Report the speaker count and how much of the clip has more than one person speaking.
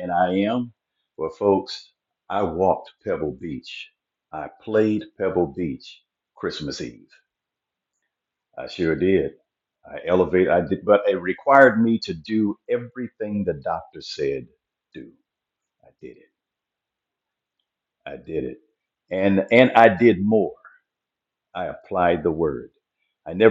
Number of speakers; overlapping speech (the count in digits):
1, no overlap